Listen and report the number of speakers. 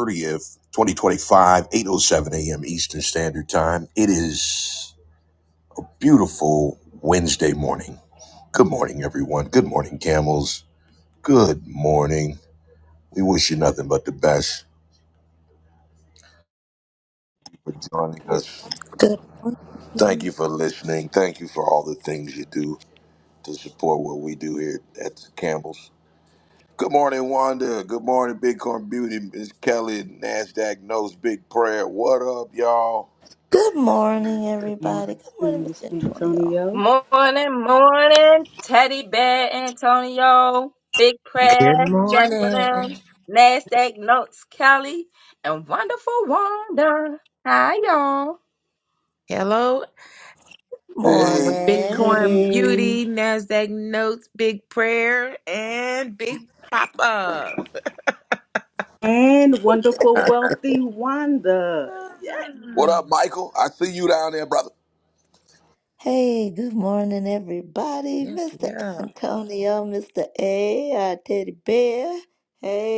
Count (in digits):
5